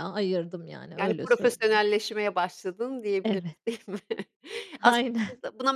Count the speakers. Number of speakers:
2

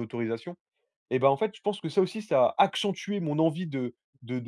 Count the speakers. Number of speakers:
1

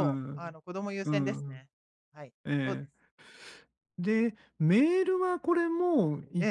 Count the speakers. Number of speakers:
2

